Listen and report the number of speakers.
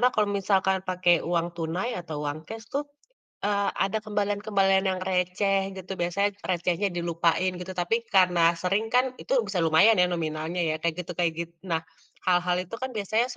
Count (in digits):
1